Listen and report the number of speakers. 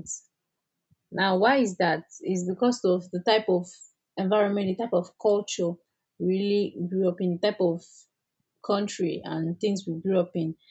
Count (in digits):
1